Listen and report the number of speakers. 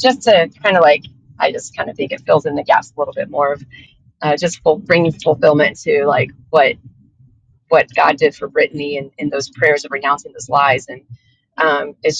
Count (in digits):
1